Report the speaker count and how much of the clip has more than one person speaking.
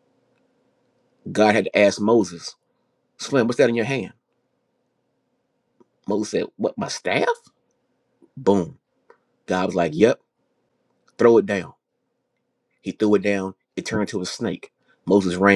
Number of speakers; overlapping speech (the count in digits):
1, no overlap